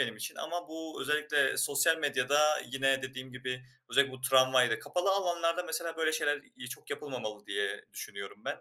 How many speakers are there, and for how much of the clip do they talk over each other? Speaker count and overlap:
one, no overlap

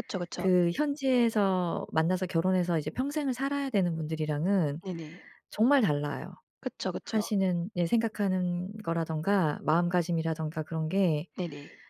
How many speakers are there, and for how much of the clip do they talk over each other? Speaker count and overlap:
two, about 3%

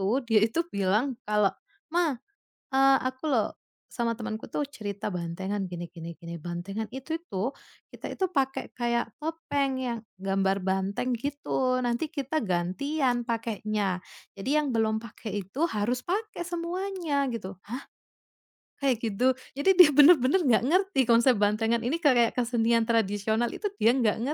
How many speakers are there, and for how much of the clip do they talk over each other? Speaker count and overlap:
one, no overlap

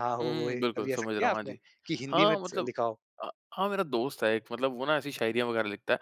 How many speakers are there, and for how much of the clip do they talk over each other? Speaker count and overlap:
two, about 32%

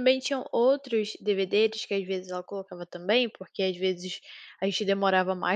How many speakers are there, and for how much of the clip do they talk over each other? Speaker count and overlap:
one, no overlap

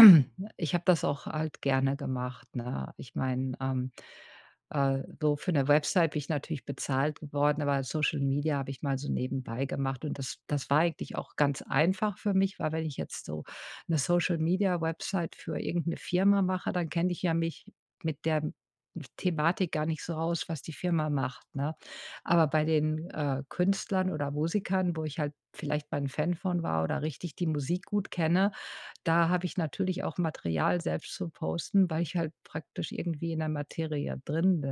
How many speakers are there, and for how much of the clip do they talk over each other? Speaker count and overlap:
one, no overlap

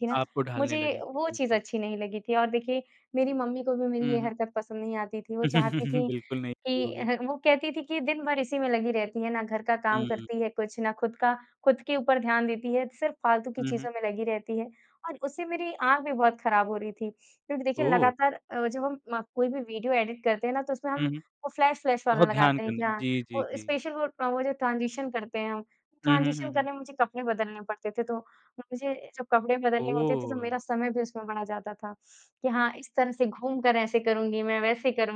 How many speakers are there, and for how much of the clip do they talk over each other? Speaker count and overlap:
two, about 17%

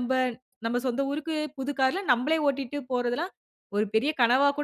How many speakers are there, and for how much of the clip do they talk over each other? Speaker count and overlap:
one, no overlap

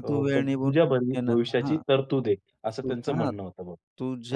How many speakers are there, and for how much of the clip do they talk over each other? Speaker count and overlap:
two, about 54%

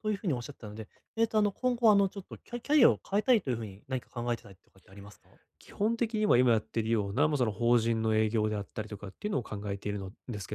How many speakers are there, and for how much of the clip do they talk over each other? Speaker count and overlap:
two, no overlap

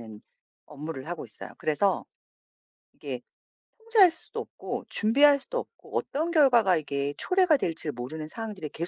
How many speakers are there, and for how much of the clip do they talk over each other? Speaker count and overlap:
one, no overlap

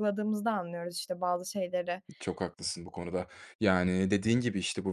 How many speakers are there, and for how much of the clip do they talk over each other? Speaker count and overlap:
two, no overlap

